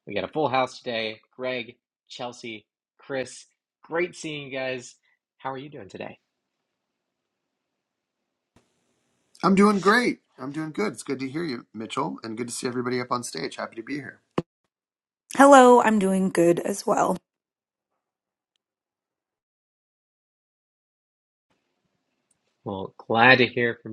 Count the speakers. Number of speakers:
3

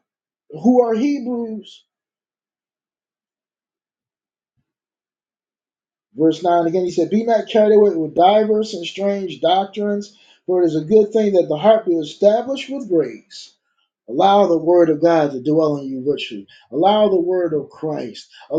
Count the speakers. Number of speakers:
1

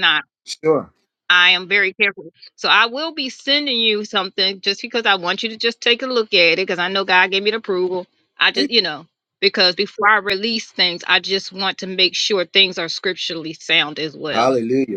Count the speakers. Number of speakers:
2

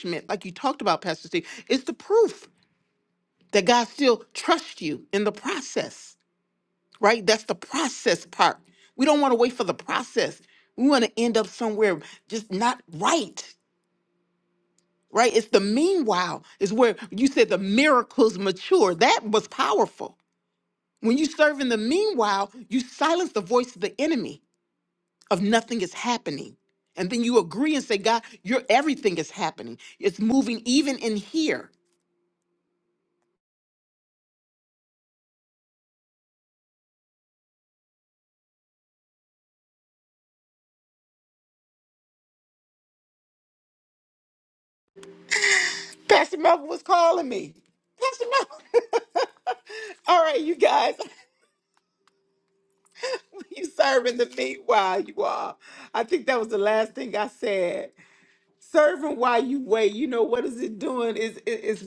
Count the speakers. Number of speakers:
1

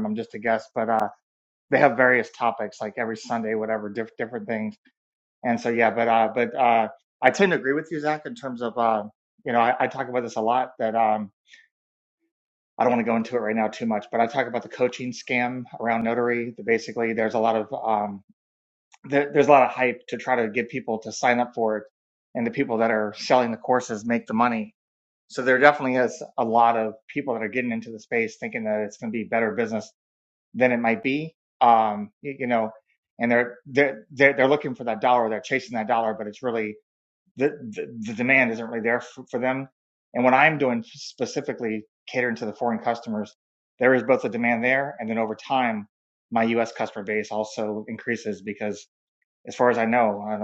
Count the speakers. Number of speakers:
1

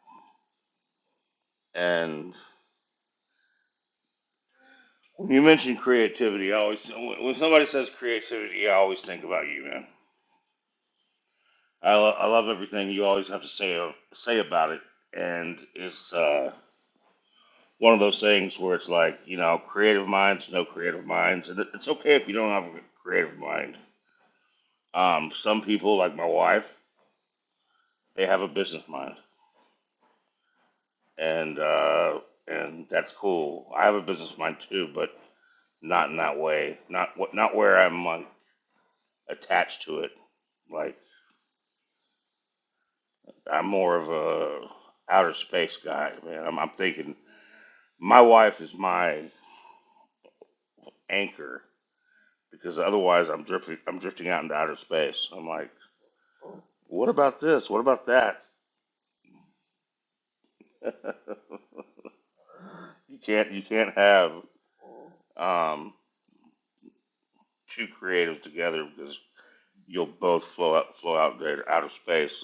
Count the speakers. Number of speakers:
1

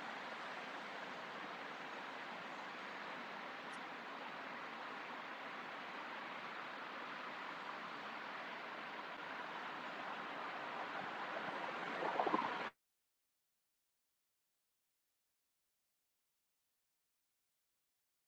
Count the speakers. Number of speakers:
0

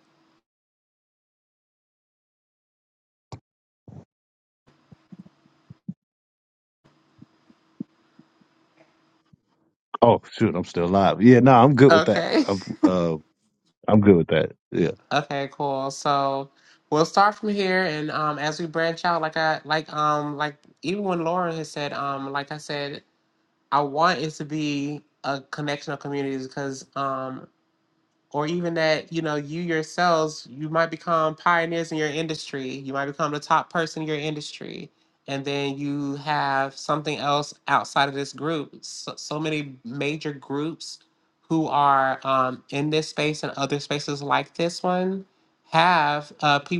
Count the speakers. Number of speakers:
2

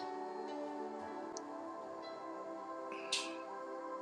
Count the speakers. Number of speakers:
0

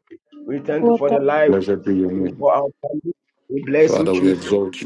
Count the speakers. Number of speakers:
2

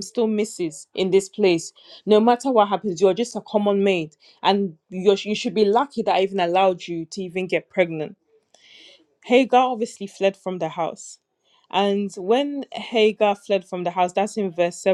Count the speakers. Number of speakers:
1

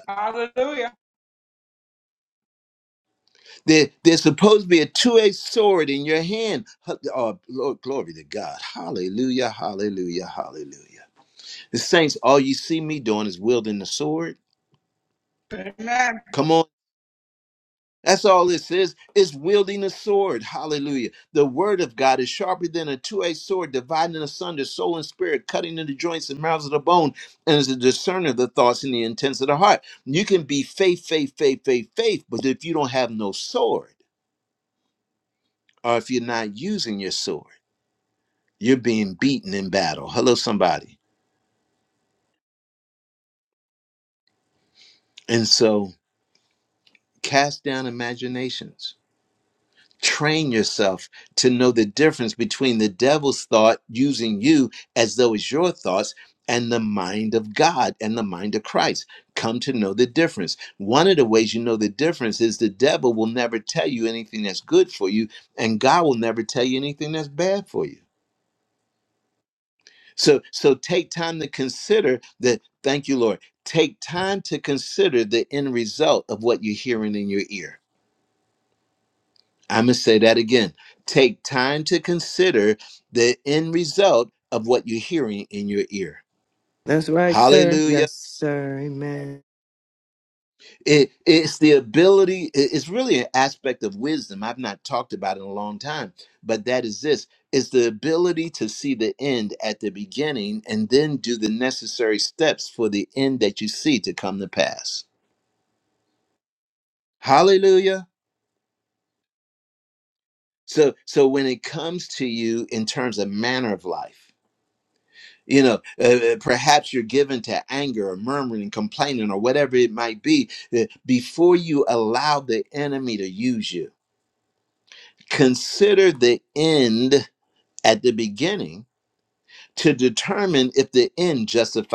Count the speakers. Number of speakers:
3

